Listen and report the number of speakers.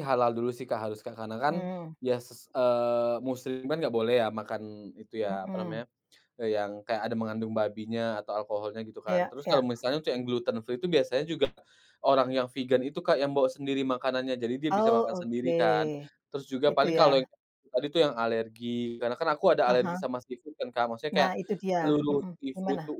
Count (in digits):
2